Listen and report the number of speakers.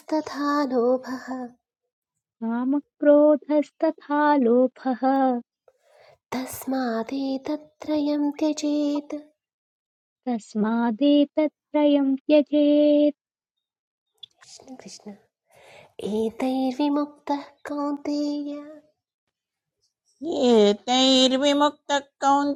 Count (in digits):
3